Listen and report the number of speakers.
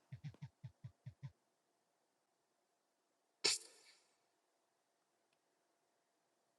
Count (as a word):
zero